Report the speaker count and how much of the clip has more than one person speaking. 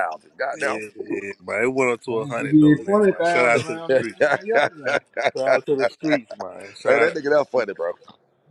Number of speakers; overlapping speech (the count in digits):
3, about 32%